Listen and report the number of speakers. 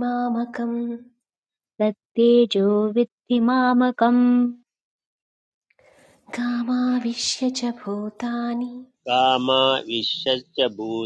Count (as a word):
three